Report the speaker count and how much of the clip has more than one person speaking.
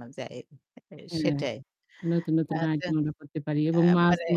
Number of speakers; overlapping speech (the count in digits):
2, about 29%